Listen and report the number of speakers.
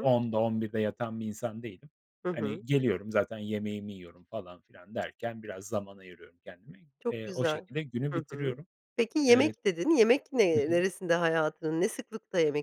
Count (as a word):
two